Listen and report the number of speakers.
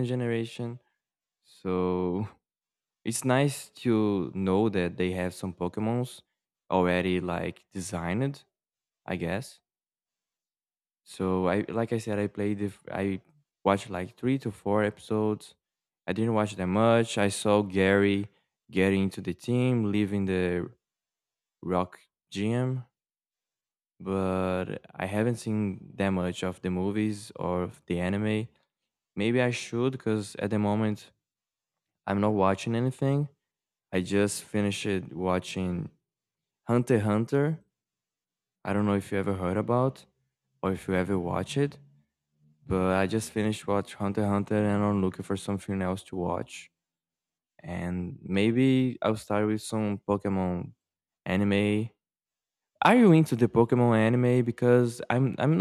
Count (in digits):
1